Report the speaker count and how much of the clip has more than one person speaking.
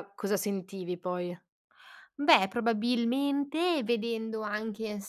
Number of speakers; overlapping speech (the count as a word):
two, no overlap